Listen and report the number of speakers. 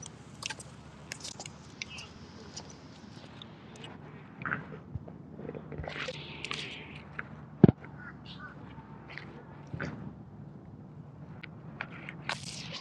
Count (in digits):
0